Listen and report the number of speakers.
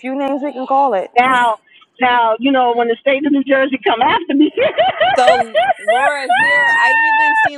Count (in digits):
3